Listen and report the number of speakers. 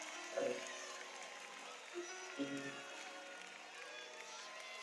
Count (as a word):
zero